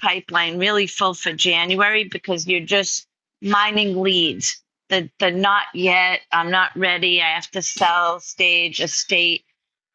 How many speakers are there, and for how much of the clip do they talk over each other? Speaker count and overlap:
one, no overlap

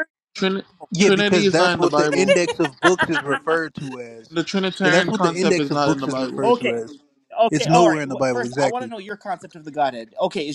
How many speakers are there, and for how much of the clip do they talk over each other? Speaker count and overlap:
three, about 43%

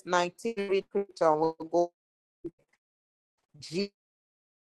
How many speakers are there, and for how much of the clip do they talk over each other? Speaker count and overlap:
one, no overlap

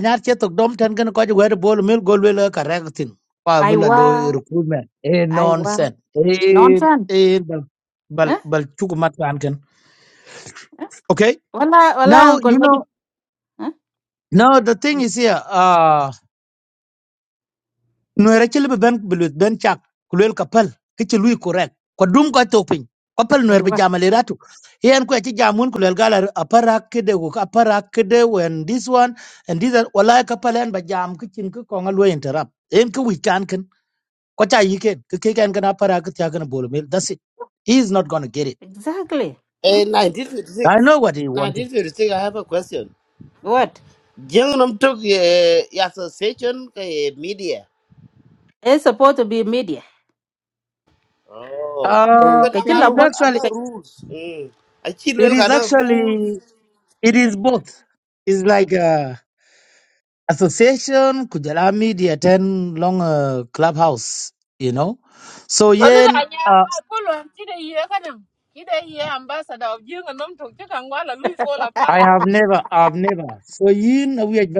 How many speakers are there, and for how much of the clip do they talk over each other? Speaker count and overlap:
four, about 9%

